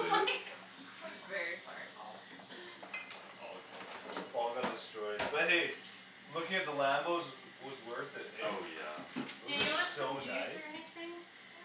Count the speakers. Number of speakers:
4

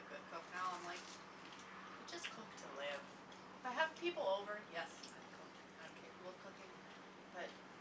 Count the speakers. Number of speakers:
1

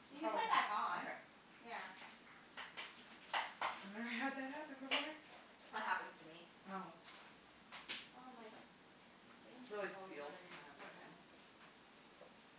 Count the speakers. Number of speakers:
2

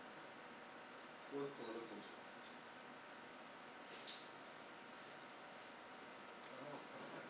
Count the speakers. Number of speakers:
1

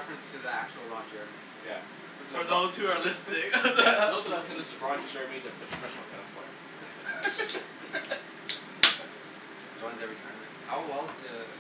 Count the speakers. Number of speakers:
3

